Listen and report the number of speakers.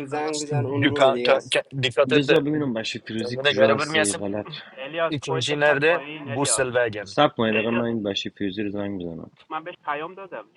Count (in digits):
4